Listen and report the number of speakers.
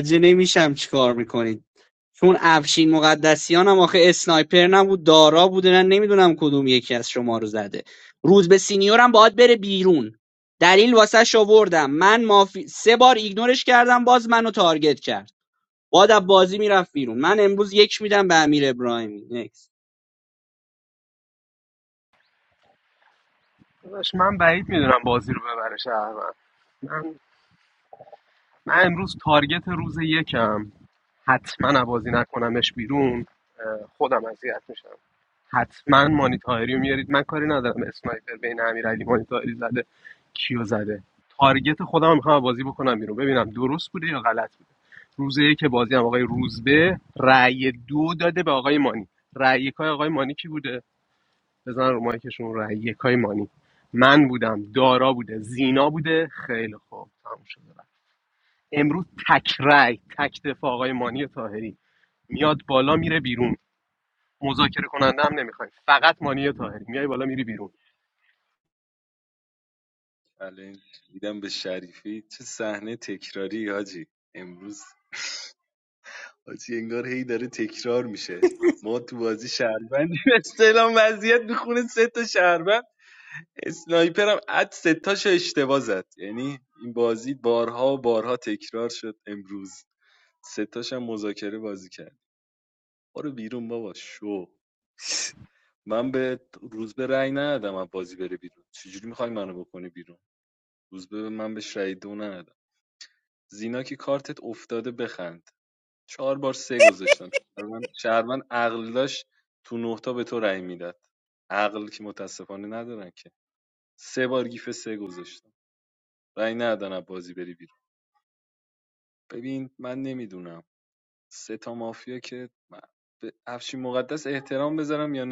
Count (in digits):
3